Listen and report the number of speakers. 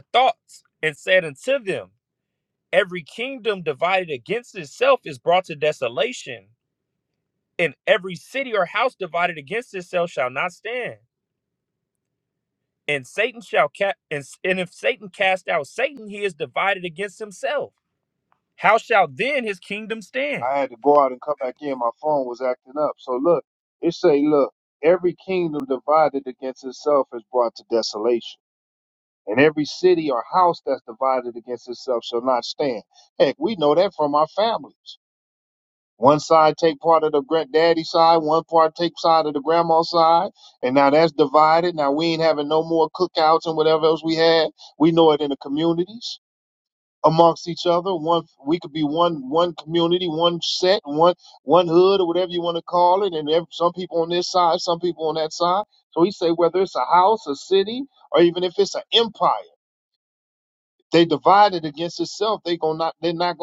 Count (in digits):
2